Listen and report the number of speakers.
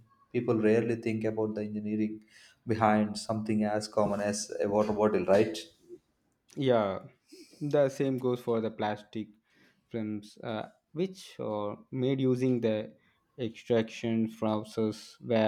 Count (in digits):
2